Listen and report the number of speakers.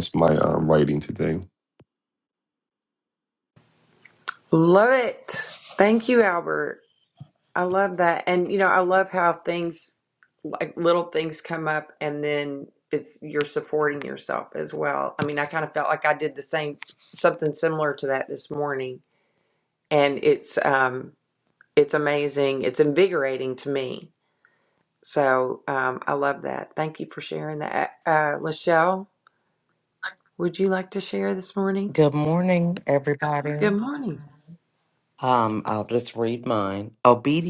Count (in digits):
3